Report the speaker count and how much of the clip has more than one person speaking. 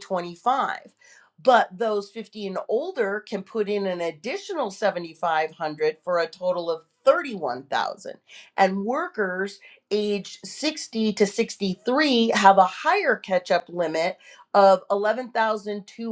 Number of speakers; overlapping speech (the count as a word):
one, no overlap